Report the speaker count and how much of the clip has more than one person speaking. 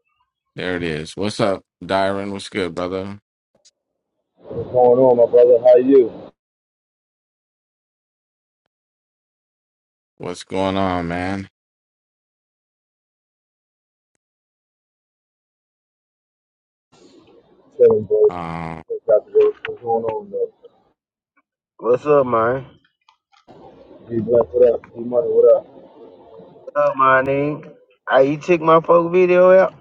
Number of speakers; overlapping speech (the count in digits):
3, under 1%